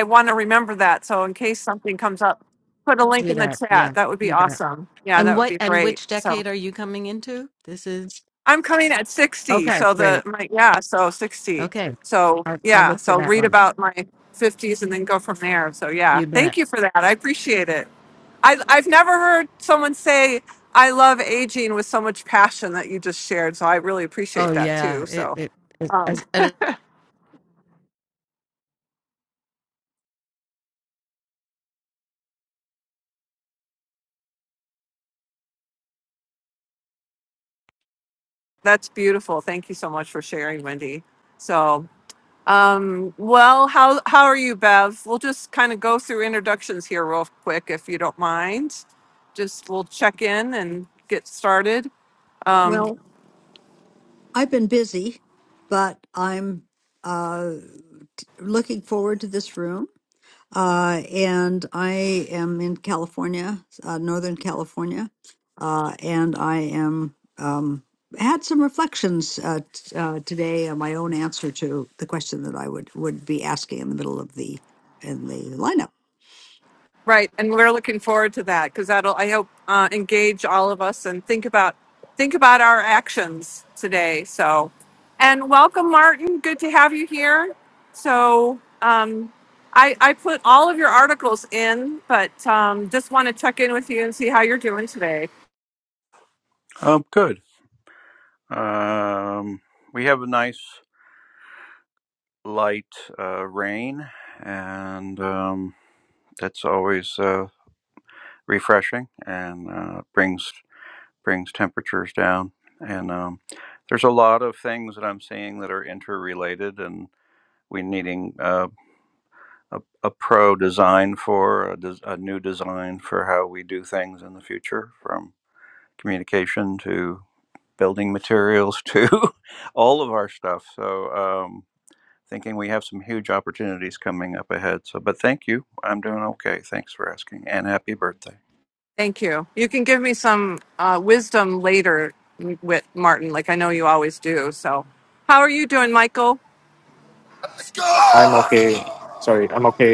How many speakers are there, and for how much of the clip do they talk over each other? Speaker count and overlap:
5, about 4%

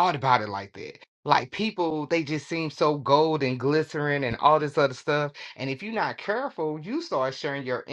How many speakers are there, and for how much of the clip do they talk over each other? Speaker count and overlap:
1, no overlap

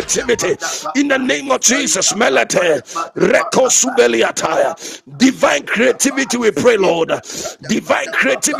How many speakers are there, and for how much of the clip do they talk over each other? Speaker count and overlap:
2, about 65%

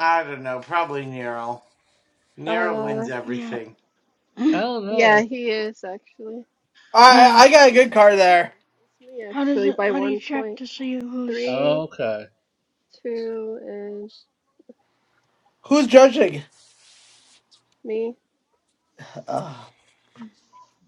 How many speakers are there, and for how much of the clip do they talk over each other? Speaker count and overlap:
5, about 19%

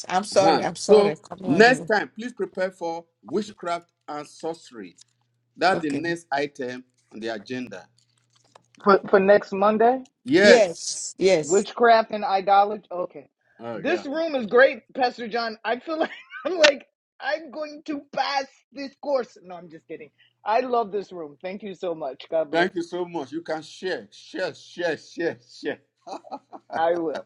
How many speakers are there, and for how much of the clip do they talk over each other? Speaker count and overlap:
3, about 8%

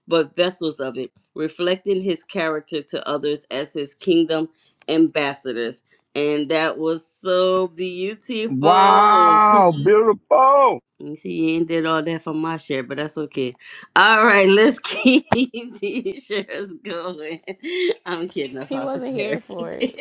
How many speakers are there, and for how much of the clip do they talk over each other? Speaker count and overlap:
3, about 5%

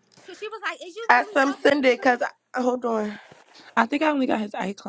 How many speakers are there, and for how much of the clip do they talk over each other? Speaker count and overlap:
3, about 21%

